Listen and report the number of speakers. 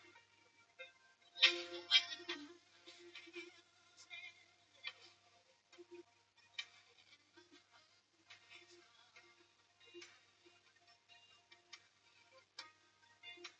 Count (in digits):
0